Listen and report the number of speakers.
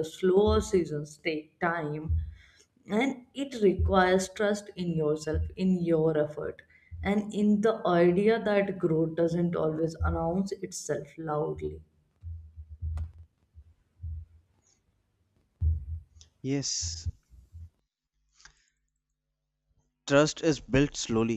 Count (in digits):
2